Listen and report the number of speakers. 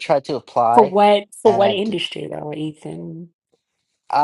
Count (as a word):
two